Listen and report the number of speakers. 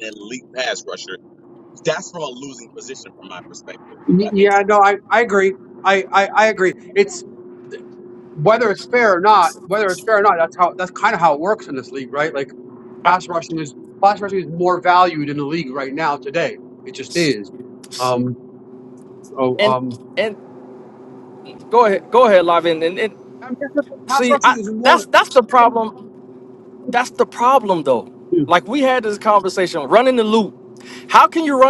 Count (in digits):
3